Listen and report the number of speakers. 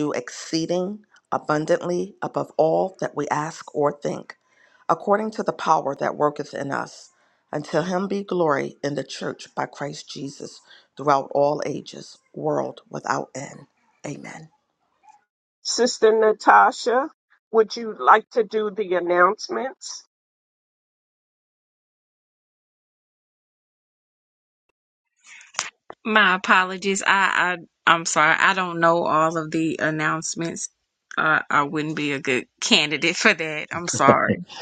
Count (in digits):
3